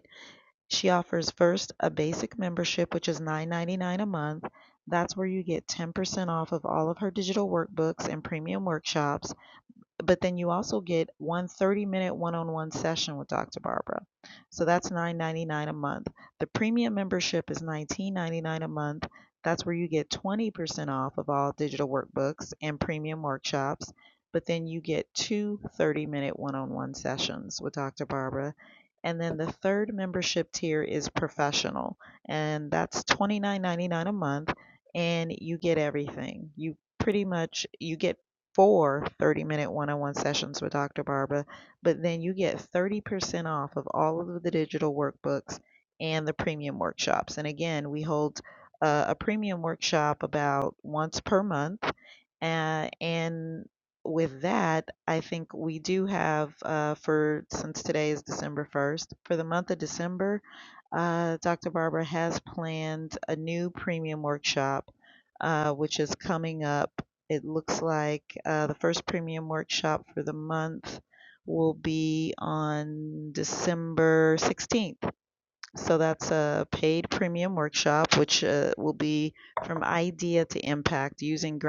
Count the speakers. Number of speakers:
1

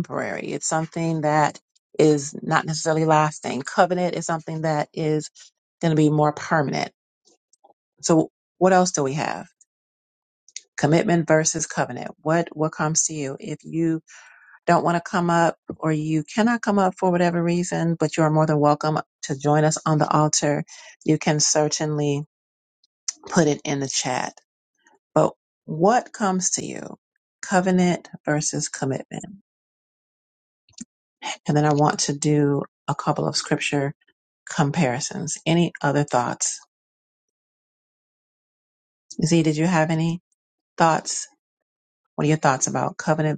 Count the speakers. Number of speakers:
1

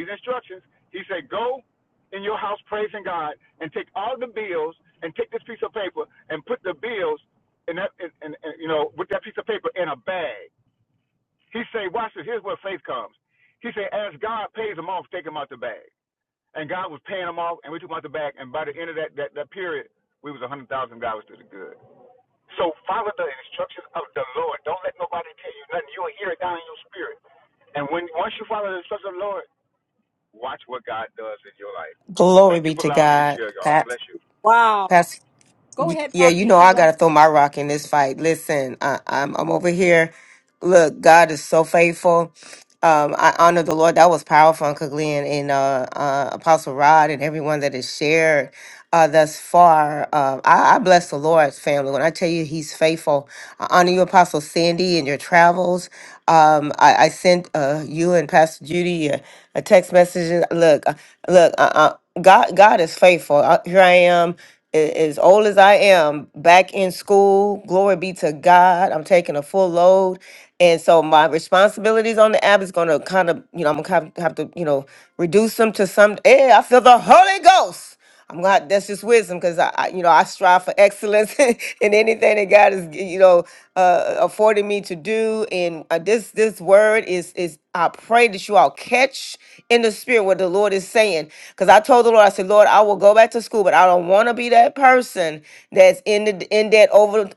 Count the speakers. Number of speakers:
3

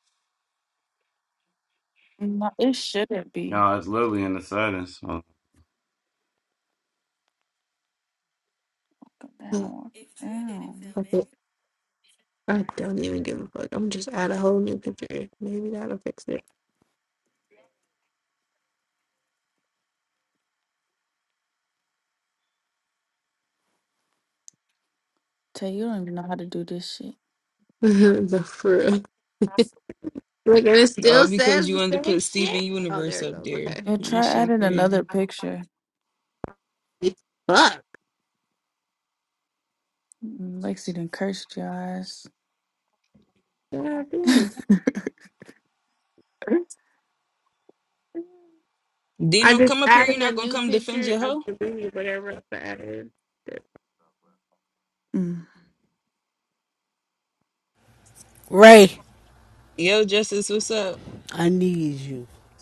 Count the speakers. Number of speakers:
5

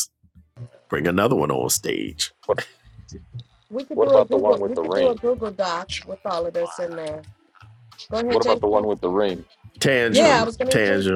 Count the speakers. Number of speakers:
3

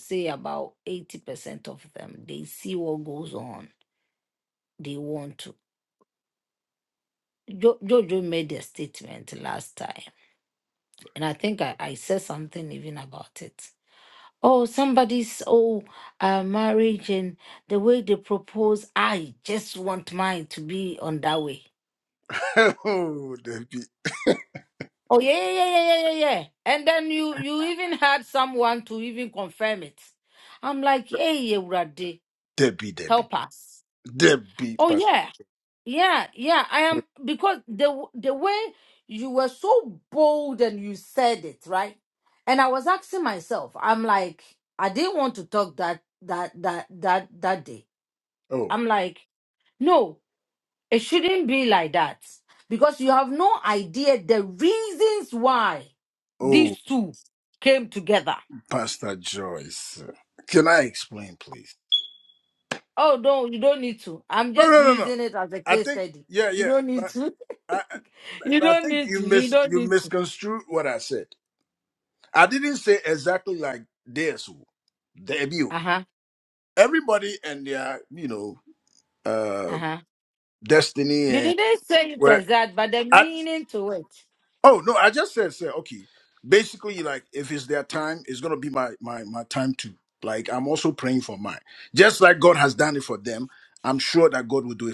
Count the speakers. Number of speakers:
2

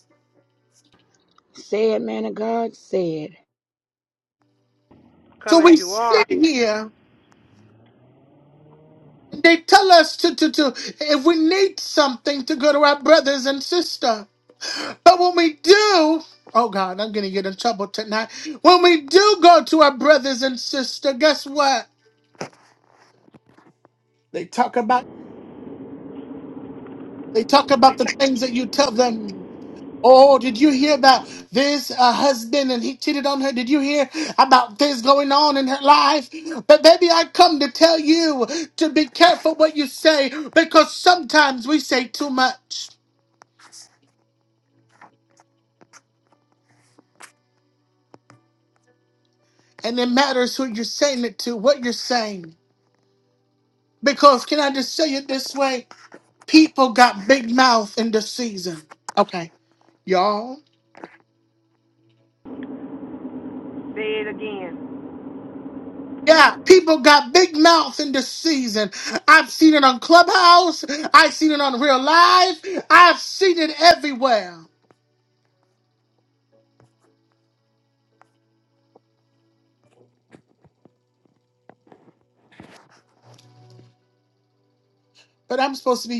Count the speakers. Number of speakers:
3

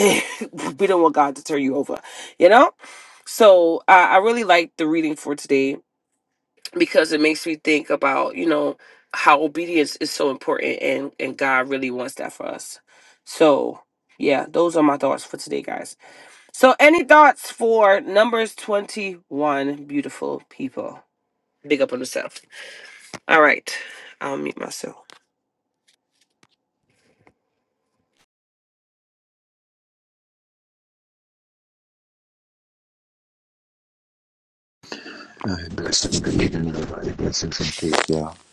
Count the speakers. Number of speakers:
2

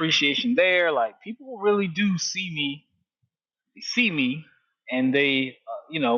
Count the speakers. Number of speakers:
1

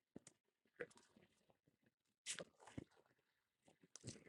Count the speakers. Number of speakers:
0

